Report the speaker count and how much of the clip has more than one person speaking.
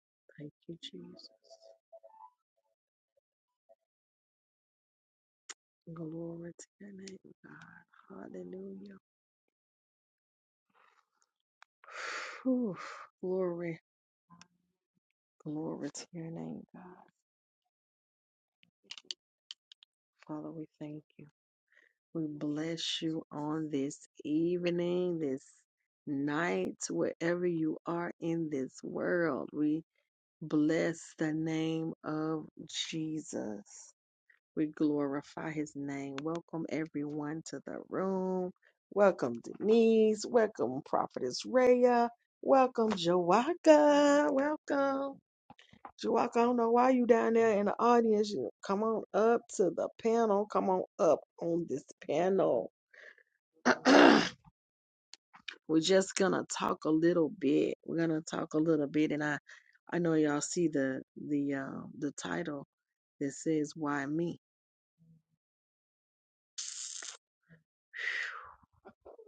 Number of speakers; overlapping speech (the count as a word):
one, no overlap